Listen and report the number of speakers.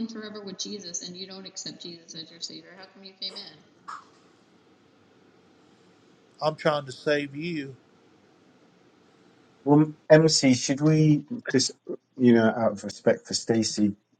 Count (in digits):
3